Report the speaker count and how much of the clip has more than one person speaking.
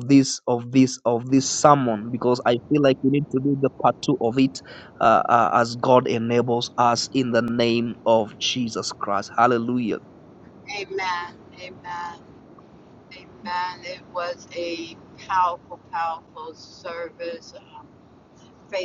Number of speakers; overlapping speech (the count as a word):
two, no overlap